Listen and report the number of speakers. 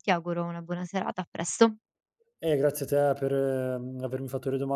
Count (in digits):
2